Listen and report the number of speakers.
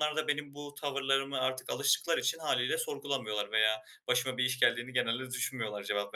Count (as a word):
one